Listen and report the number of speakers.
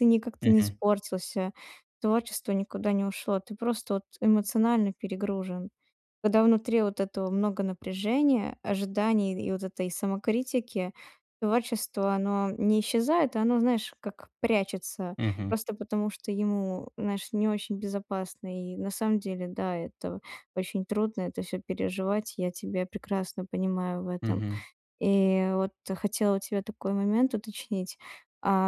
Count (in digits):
2